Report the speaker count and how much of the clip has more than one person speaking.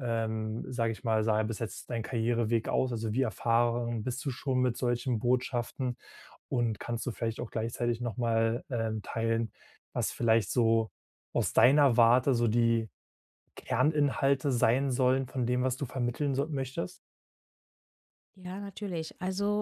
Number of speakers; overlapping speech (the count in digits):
2, no overlap